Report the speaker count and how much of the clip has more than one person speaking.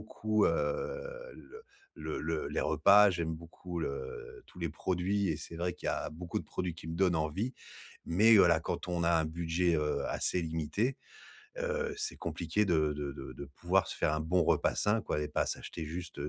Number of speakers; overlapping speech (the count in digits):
1, no overlap